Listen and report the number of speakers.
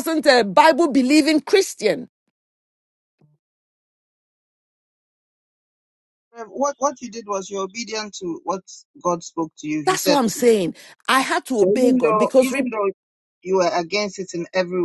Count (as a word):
two